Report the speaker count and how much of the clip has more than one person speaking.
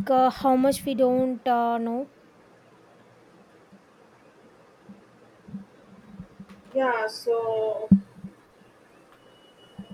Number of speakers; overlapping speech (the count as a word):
two, no overlap